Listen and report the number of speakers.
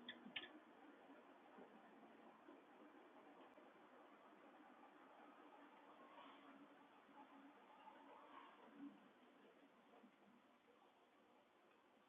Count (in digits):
0